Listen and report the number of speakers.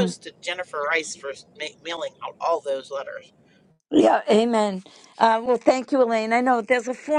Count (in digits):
2